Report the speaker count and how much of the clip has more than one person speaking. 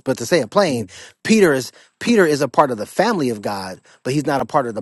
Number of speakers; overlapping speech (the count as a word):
one, no overlap